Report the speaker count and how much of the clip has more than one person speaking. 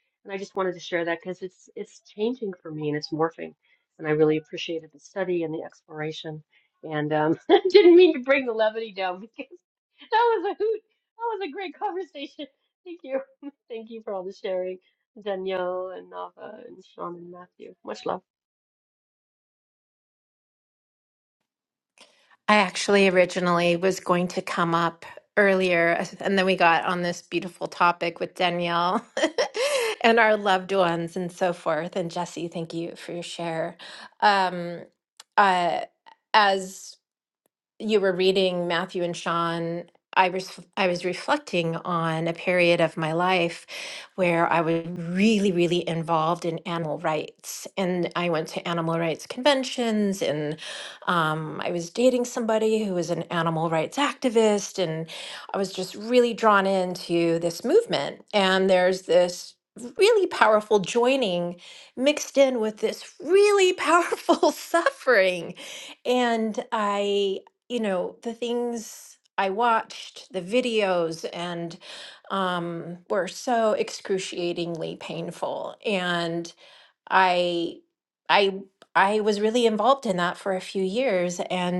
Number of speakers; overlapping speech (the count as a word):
two, no overlap